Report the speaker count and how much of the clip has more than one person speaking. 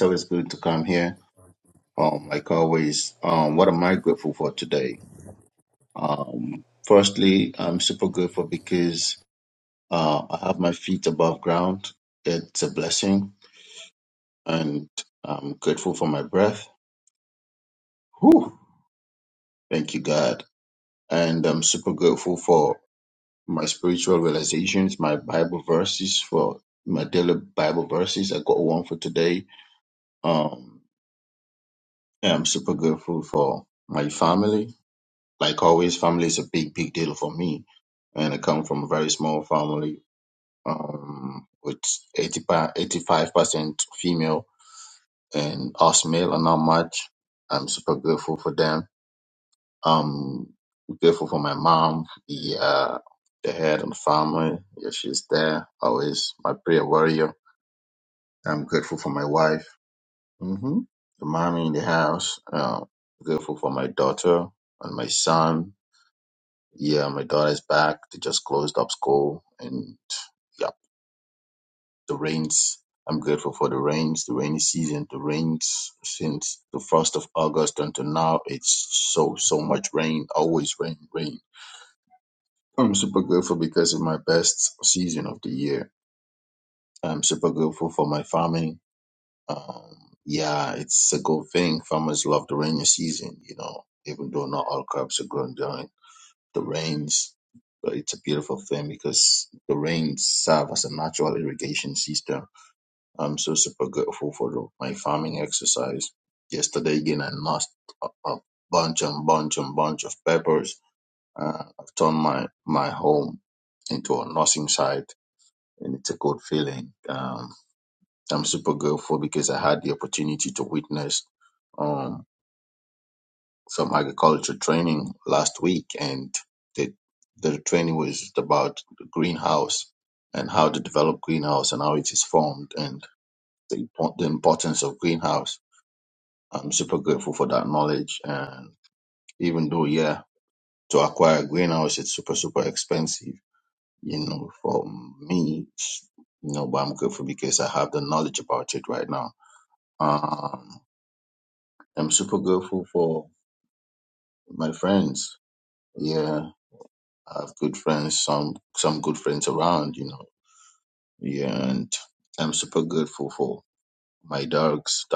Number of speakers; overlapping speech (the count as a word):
one, no overlap